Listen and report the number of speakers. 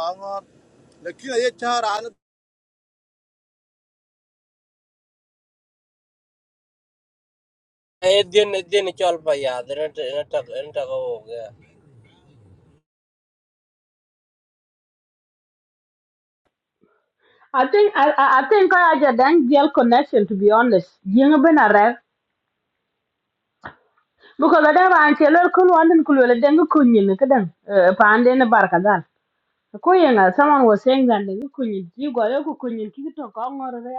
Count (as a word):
three